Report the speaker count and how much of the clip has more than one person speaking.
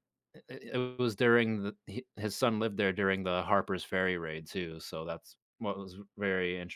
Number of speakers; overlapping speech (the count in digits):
1, no overlap